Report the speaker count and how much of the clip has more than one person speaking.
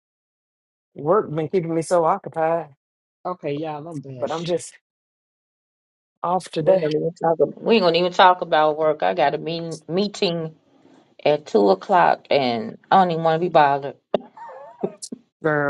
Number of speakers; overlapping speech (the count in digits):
3, about 3%